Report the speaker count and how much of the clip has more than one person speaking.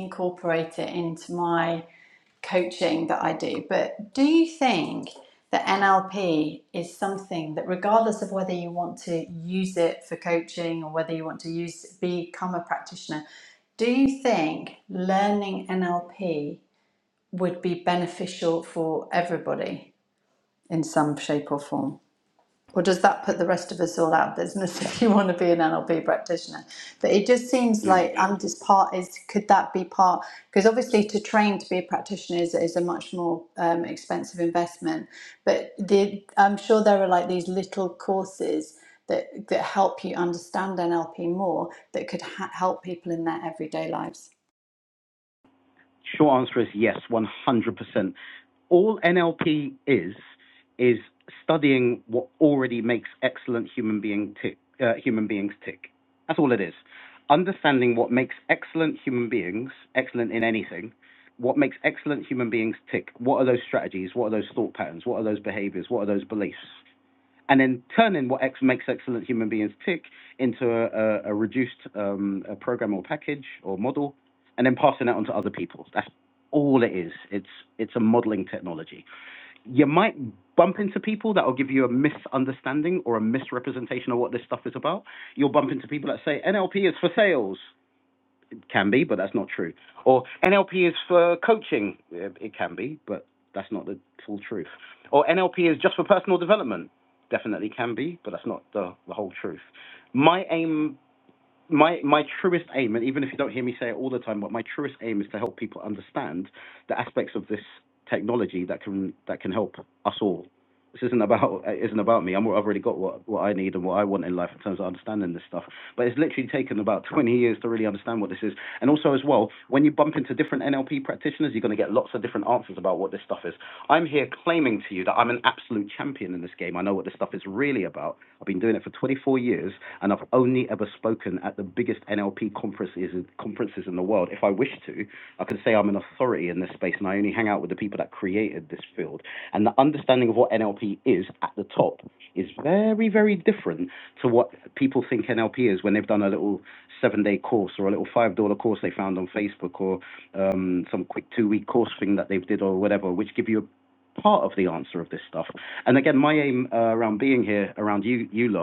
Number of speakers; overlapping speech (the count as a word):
two, under 1%